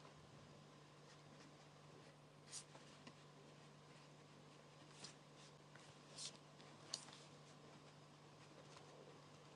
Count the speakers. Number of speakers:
0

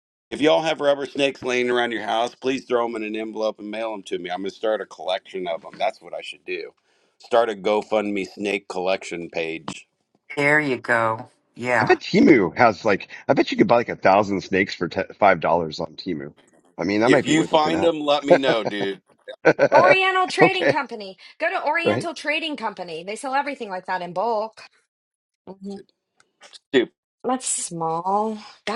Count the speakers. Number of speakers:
4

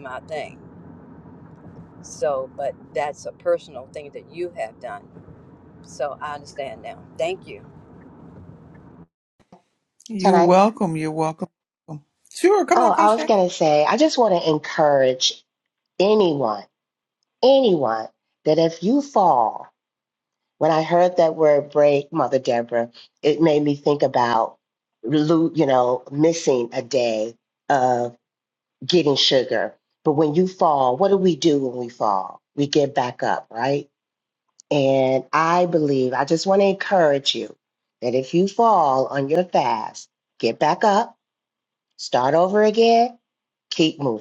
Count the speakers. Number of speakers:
3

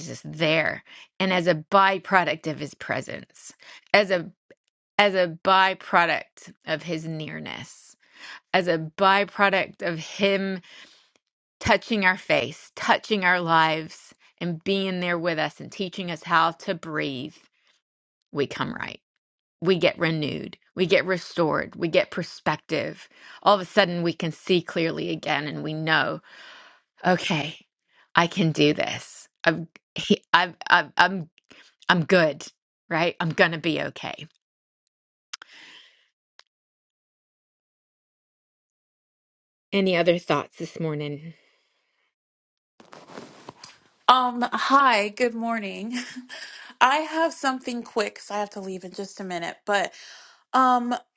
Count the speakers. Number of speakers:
2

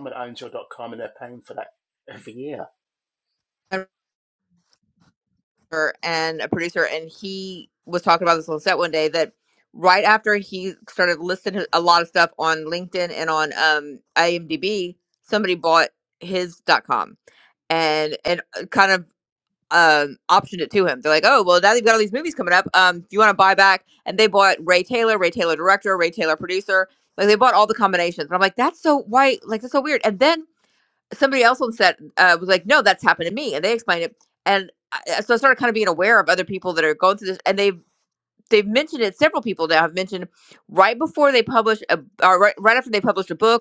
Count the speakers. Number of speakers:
2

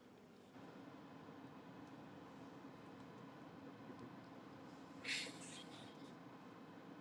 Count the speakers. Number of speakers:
0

